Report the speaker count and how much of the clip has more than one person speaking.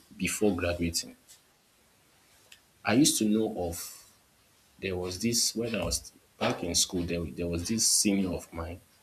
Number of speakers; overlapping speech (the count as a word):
one, no overlap